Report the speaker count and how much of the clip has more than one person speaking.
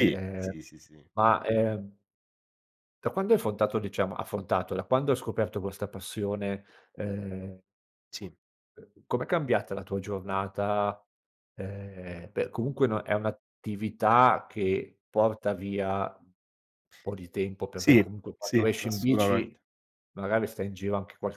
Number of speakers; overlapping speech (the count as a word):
two, about 9%